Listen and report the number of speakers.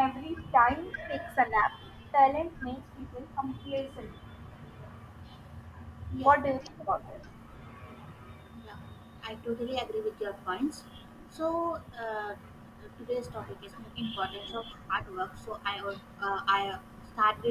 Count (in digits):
2